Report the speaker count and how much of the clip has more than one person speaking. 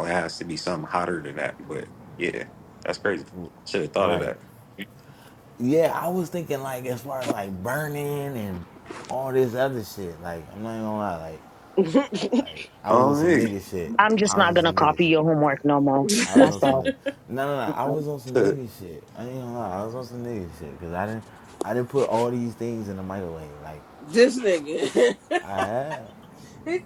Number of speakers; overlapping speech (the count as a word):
four, about 11%